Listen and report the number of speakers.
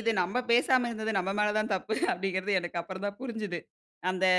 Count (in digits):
1